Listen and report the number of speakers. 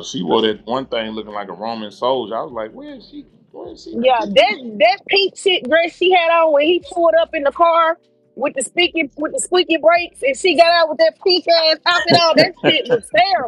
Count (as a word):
two